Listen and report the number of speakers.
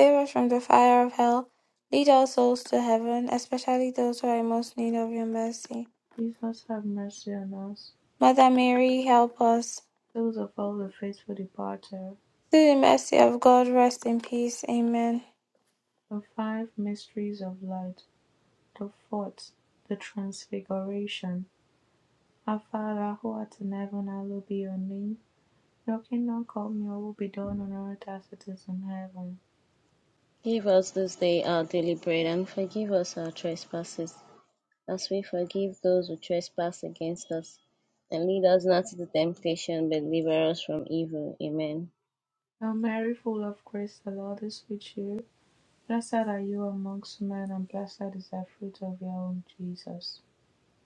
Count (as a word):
three